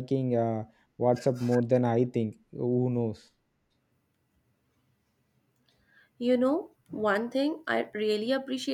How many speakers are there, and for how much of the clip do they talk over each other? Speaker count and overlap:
2, no overlap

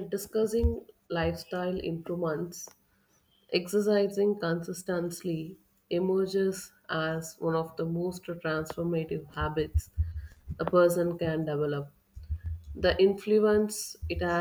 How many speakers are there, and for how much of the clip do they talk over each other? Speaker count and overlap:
1, no overlap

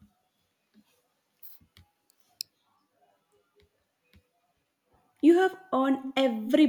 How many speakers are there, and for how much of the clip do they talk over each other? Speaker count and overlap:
1, no overlap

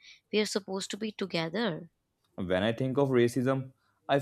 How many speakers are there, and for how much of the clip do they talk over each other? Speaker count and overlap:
2, no overlap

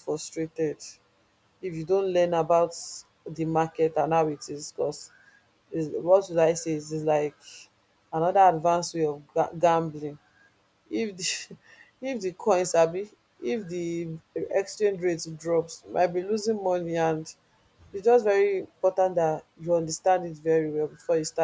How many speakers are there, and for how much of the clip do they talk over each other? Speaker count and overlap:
1, no overlap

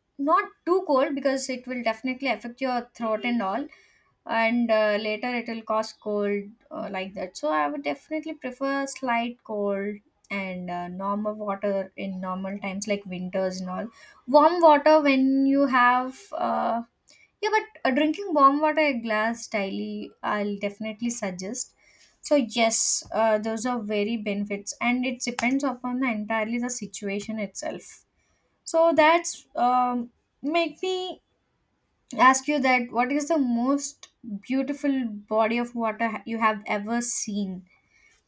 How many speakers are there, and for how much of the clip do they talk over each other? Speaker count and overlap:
1, no overlap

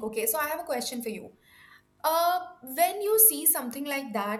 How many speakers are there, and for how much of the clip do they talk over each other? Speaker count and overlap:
1, no overlap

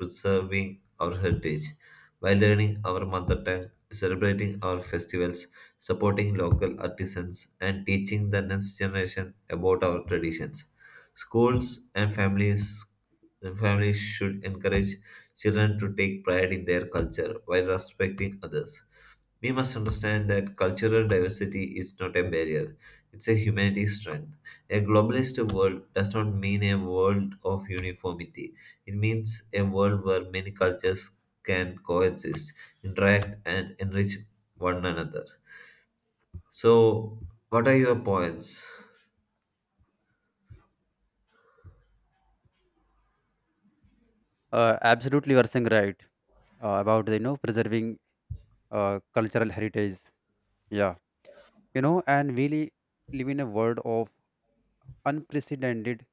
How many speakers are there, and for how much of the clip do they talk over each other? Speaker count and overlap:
2, no overlap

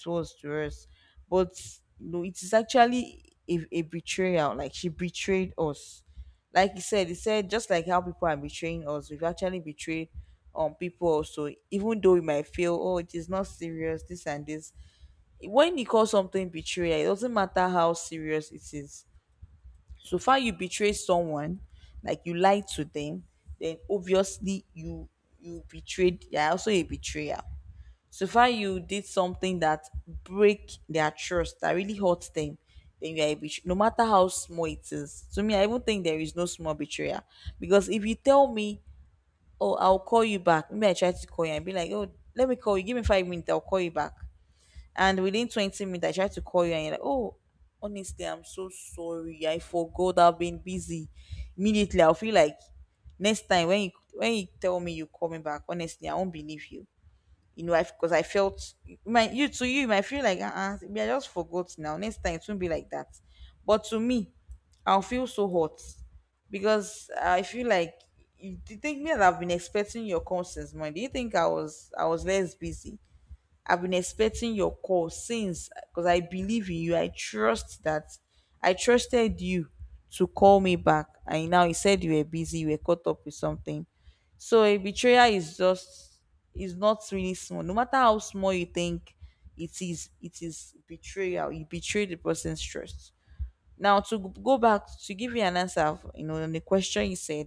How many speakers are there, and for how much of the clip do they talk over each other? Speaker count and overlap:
1, no overlap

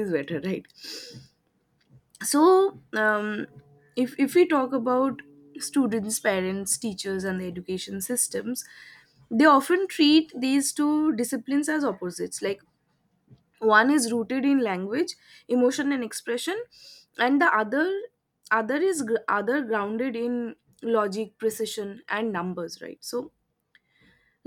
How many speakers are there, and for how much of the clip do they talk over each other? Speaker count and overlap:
1, no overlap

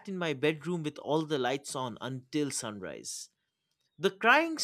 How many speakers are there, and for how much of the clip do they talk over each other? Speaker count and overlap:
1, no overlap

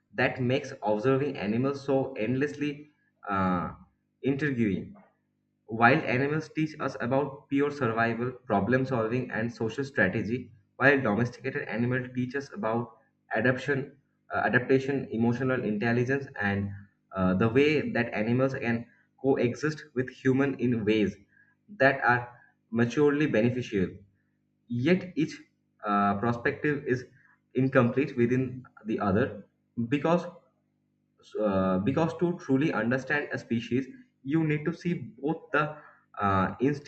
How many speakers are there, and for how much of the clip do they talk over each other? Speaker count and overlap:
1, no overlap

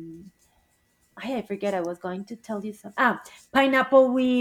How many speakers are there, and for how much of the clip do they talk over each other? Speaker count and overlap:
1, no overlap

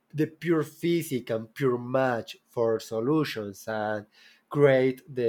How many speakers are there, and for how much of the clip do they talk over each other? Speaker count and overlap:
1, no overlap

